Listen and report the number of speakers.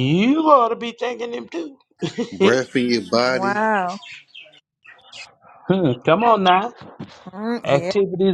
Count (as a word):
three